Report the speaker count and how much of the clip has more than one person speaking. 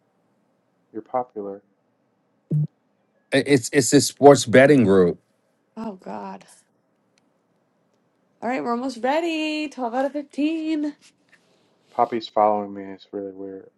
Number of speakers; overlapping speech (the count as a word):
three, no overlap